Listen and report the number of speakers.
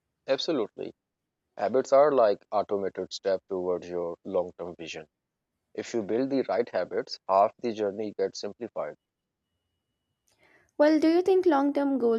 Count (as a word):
two